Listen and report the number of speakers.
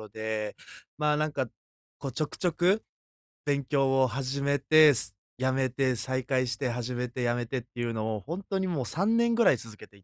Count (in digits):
1